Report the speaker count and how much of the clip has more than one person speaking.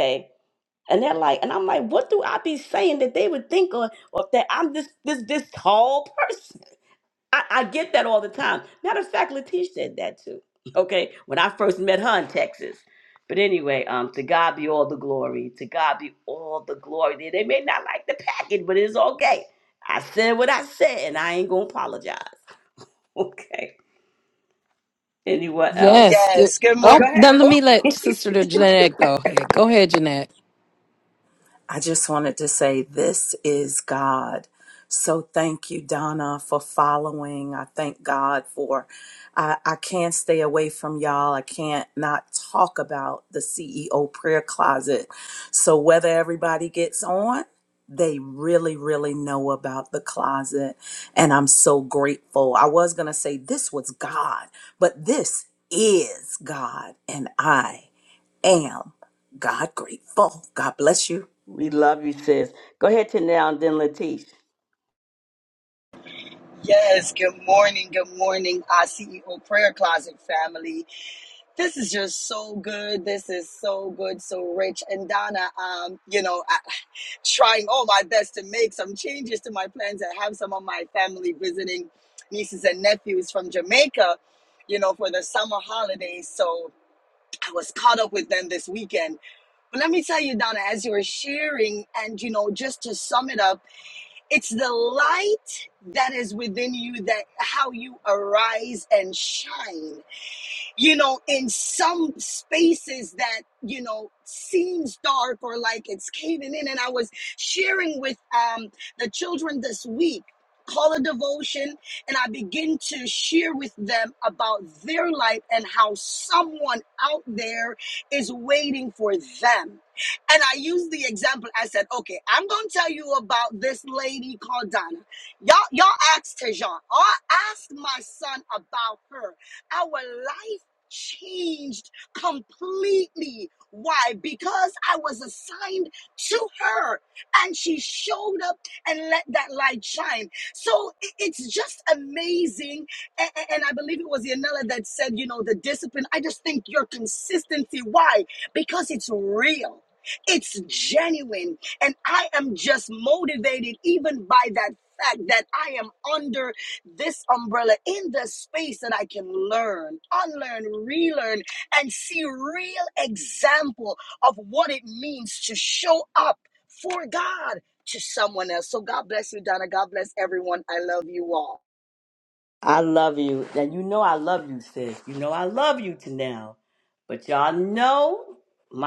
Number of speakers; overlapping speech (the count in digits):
4, about 1%